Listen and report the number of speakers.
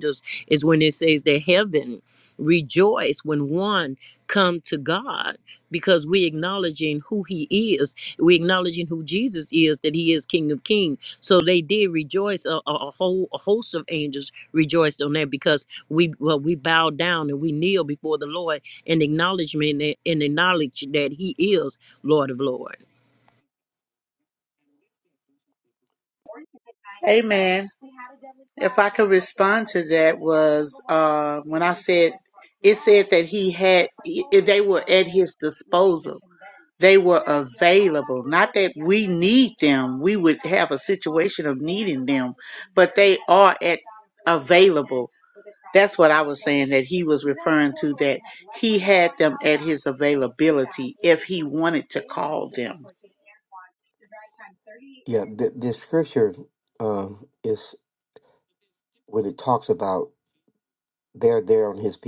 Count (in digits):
3